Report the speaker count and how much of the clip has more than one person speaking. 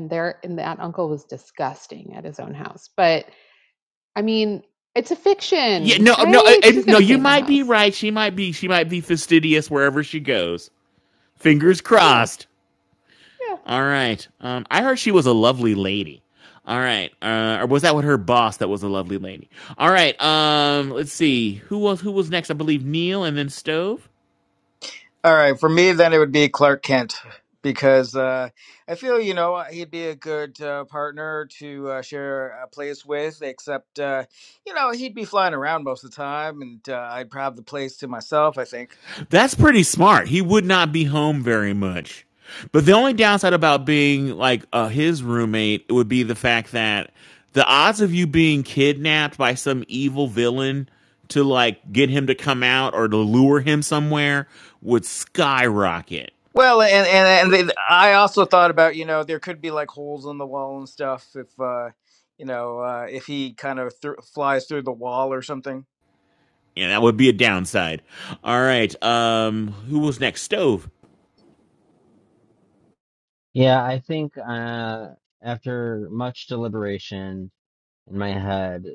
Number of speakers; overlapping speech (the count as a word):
four, about 3%